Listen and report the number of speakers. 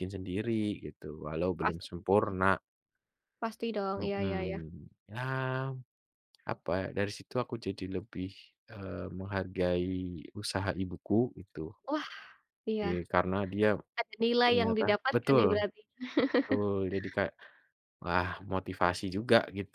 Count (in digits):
2